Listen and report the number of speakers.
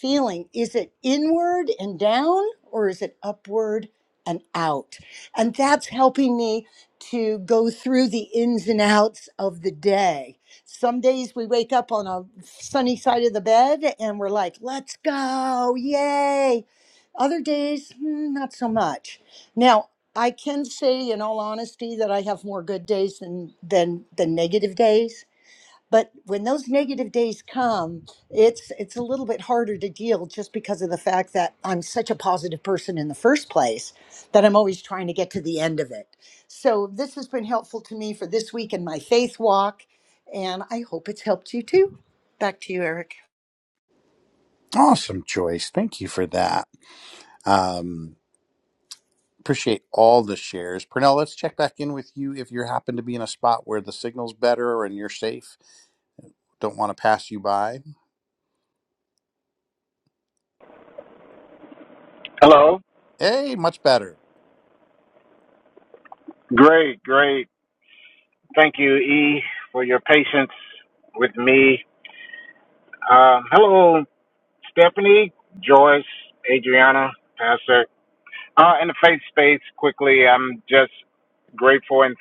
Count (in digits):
3